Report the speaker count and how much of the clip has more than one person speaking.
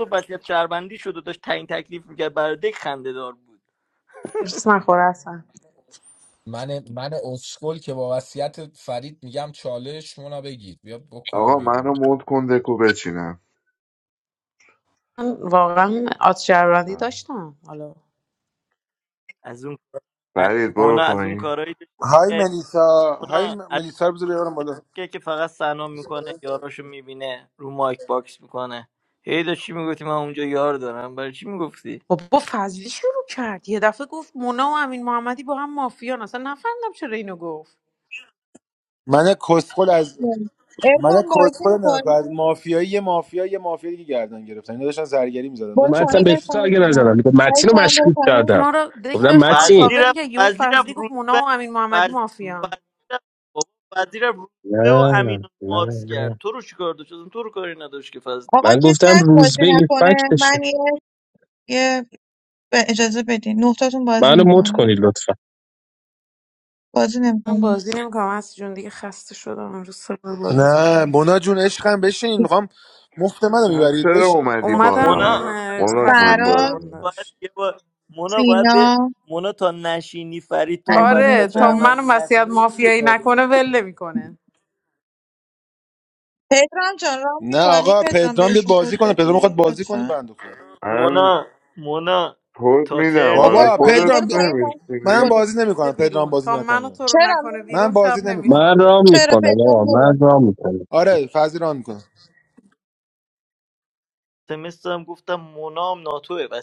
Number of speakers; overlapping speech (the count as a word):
seven, about 27%